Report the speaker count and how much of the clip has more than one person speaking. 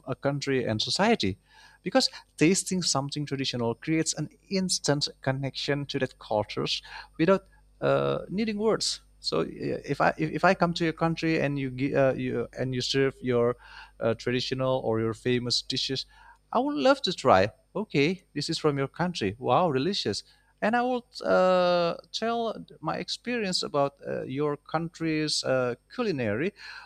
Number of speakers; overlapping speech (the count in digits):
1, no overlap